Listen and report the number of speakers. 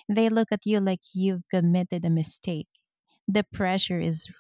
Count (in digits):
1